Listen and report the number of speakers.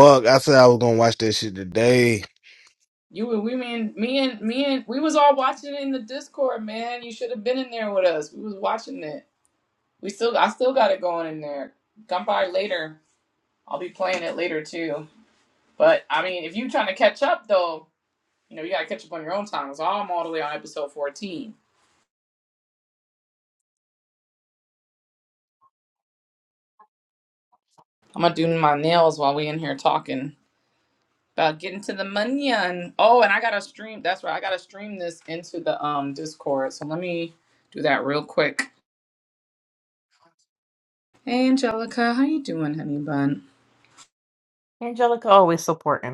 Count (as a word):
three